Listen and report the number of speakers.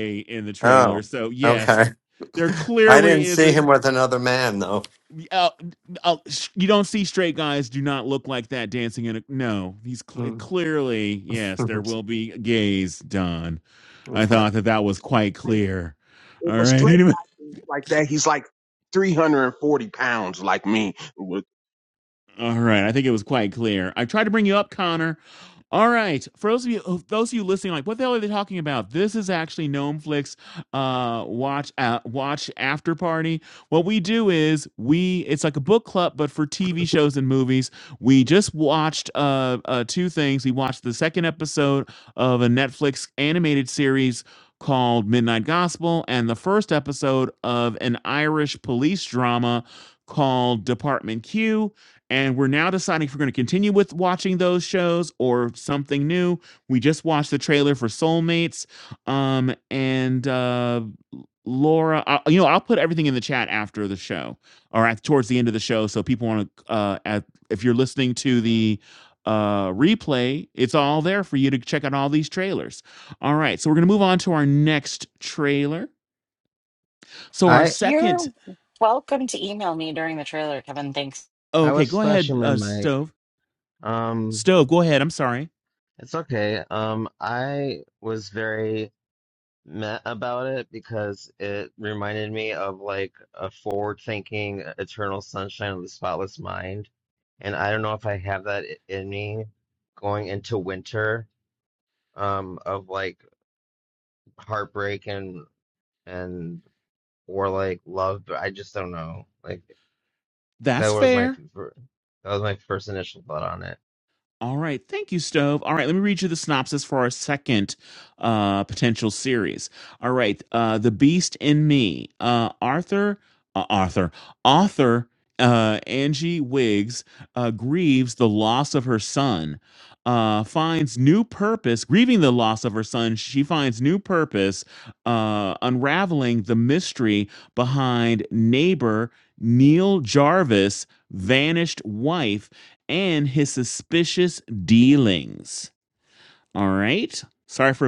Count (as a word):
five